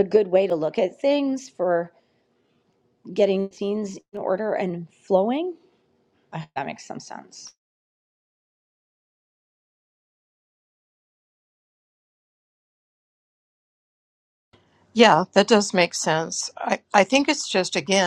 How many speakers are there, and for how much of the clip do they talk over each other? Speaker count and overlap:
two, no overlap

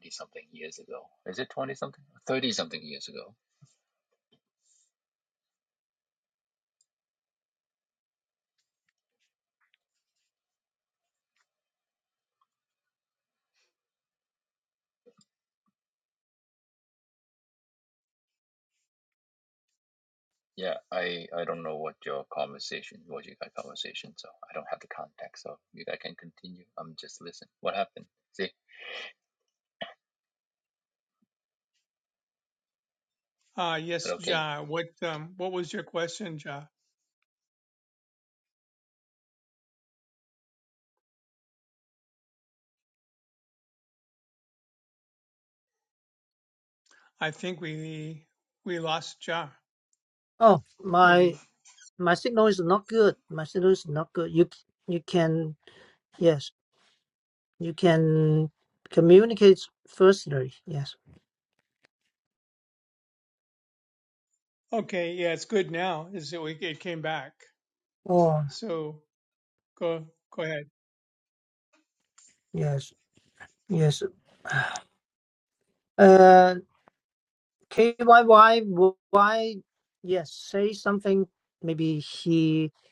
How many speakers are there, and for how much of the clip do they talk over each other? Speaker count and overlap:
three, about 1%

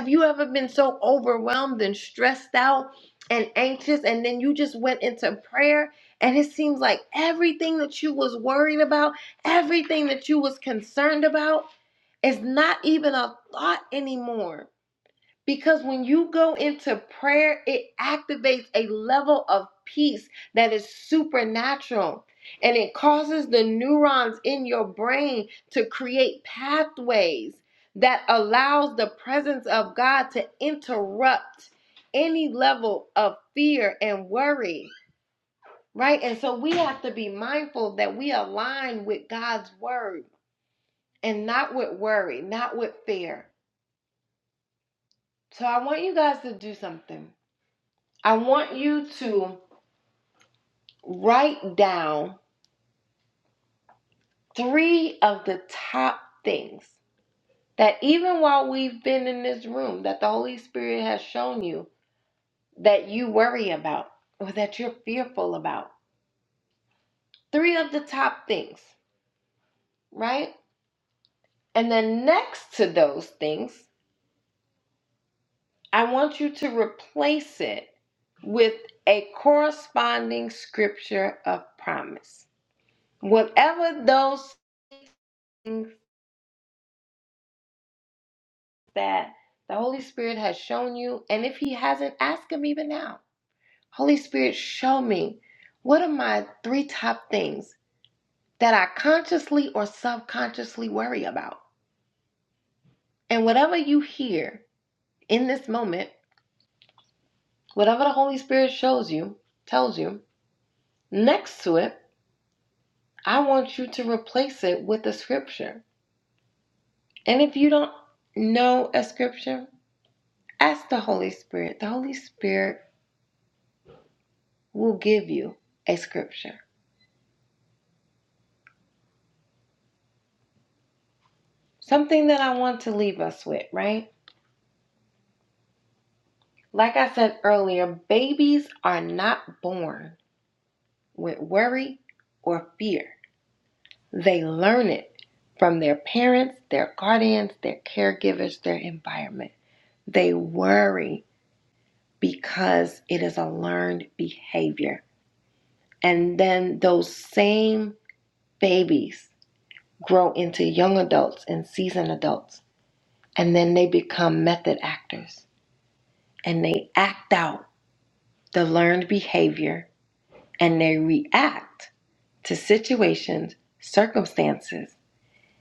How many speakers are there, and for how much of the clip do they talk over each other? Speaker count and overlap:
one, no overlap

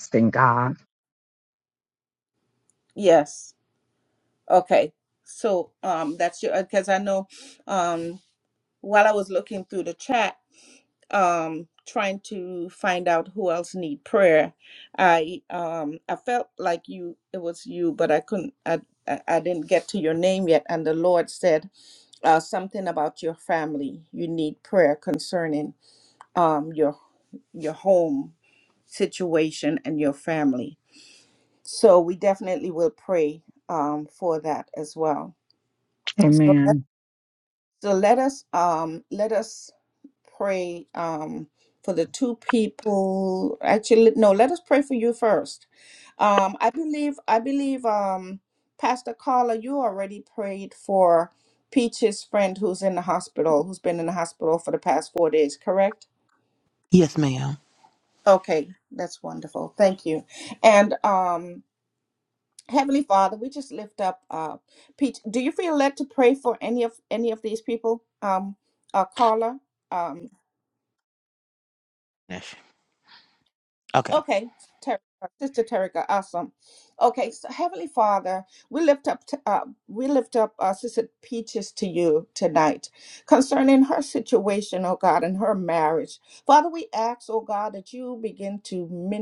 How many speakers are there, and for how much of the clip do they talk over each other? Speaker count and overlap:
three, under 1%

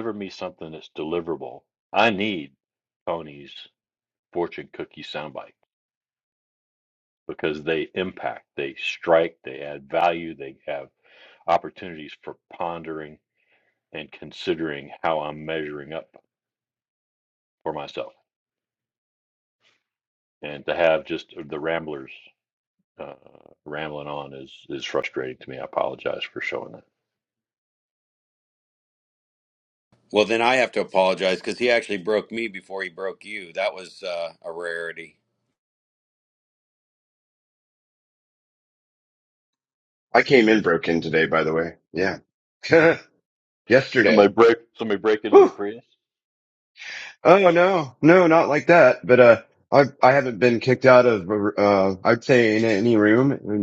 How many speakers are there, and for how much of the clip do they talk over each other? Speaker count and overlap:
three, about 1%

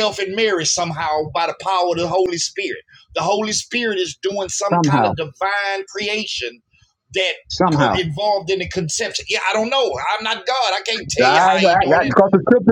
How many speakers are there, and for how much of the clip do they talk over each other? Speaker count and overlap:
two, about 13%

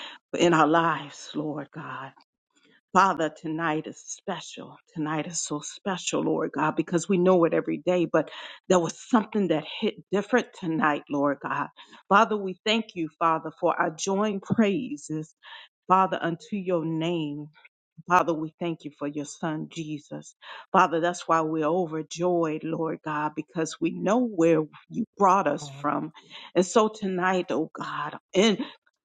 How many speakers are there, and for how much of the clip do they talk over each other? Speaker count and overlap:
one, no overlap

